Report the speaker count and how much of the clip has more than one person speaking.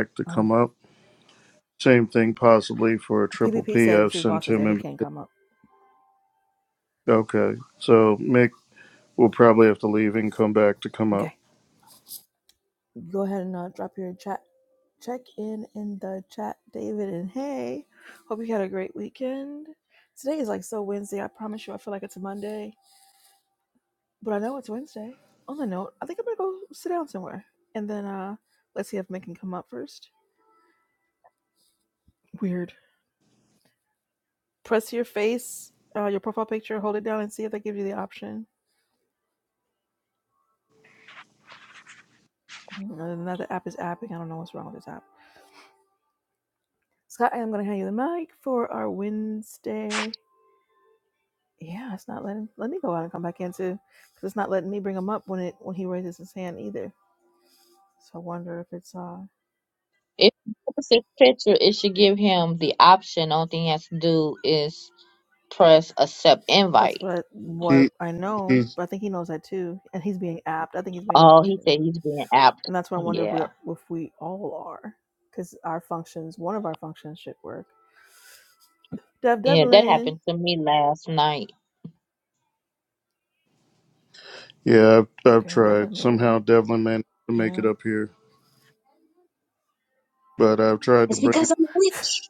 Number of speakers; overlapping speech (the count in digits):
4, about 7%